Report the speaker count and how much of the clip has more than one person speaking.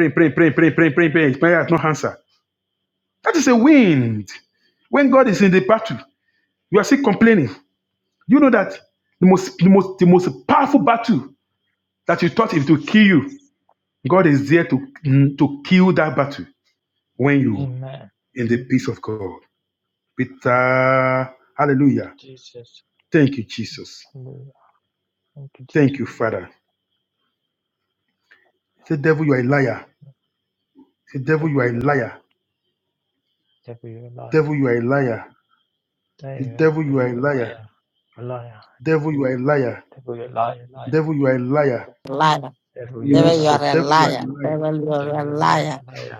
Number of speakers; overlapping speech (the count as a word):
three, about 11%